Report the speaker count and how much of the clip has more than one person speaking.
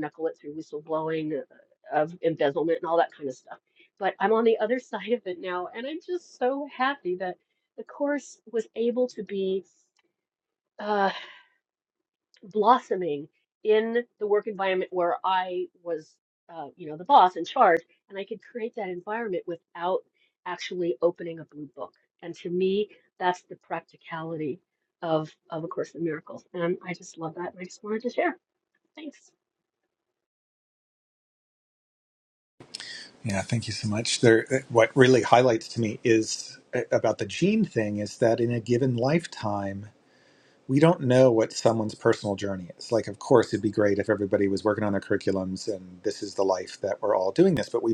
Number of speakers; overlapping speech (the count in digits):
2, no overlap